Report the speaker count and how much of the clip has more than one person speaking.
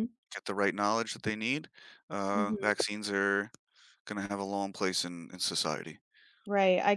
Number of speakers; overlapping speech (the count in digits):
2, about 6%